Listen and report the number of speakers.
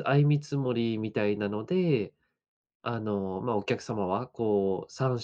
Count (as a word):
one